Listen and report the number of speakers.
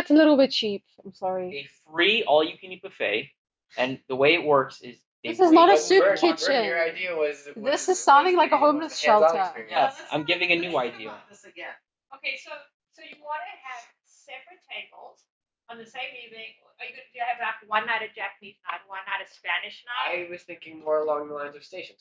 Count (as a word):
five